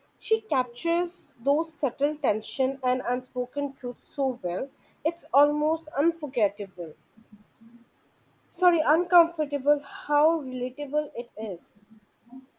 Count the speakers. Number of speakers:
one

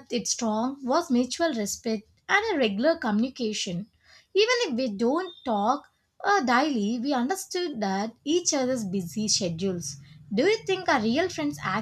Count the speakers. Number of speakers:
one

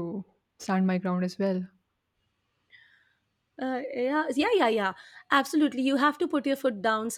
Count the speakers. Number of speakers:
two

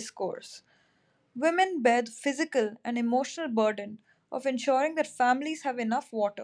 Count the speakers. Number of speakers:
one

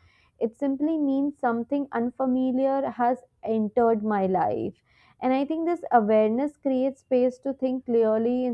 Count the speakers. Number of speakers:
one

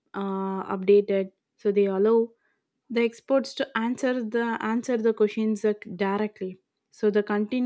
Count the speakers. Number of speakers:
one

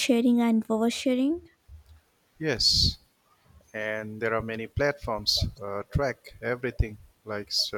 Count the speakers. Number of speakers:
two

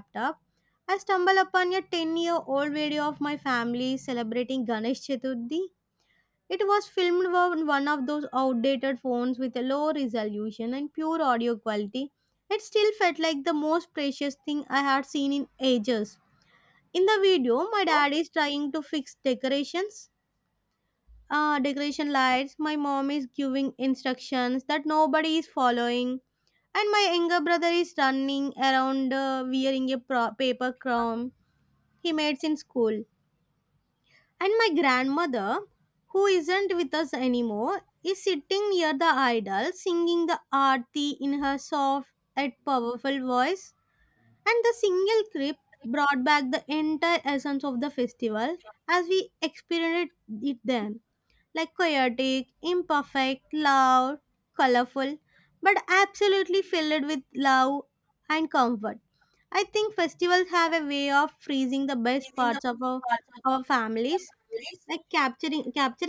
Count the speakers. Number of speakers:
one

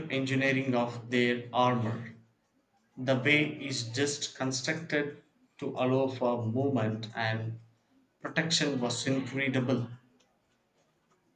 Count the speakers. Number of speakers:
one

